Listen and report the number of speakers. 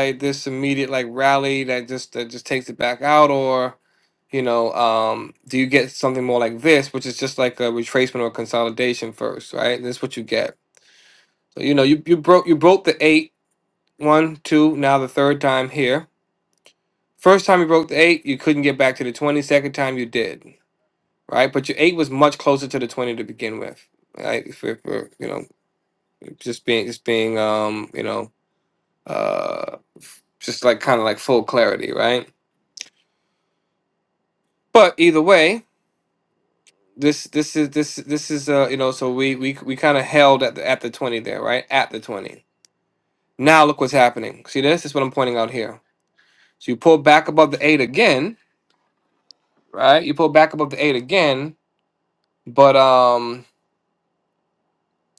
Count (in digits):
1